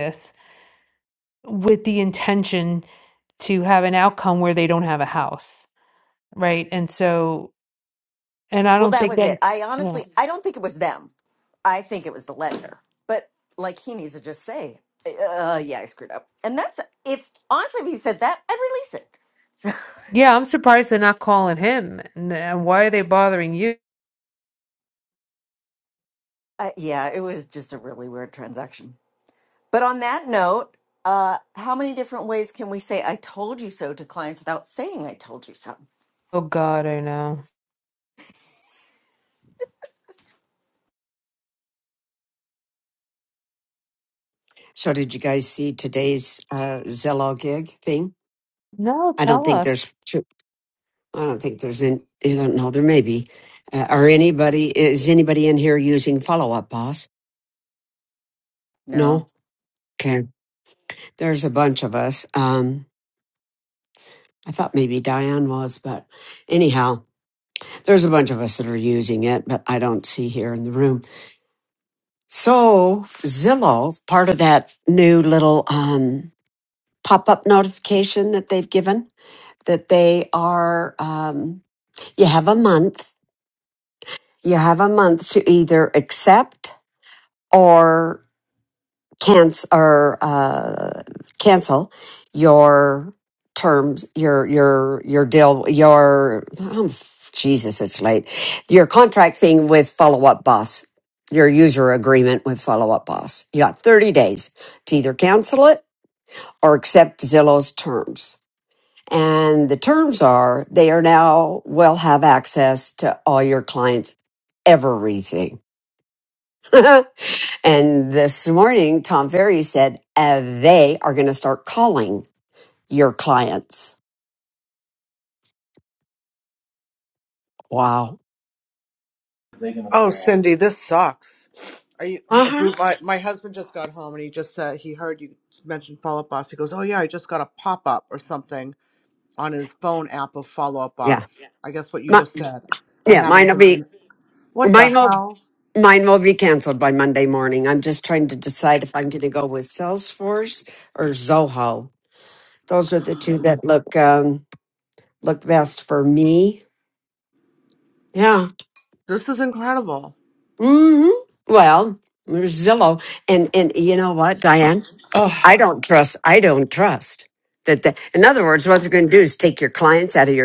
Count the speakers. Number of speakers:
4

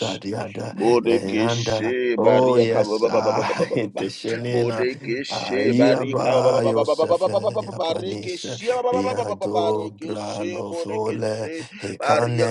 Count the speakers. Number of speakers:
2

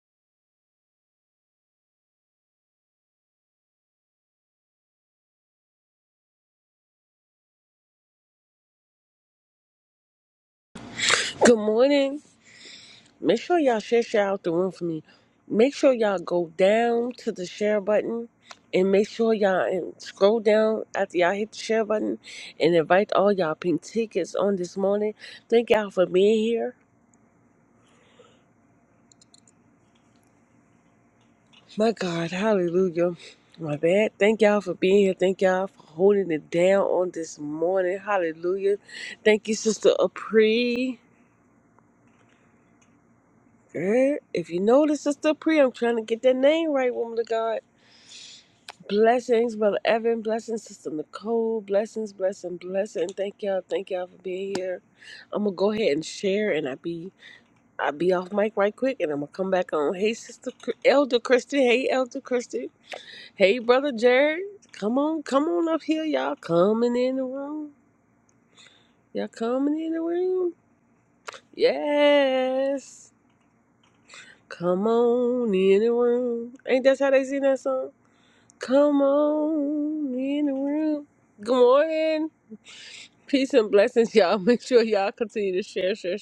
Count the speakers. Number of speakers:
1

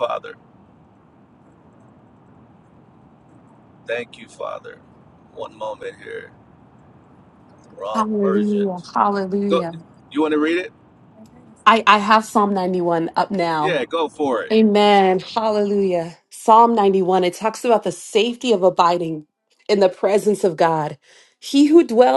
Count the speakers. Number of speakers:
2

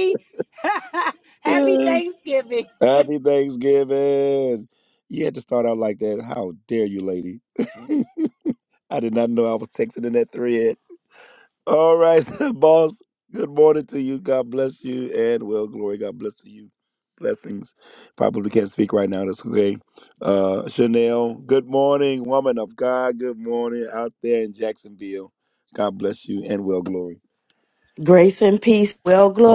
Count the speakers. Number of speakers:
3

